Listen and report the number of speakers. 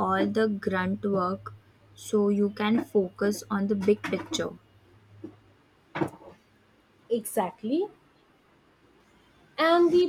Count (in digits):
2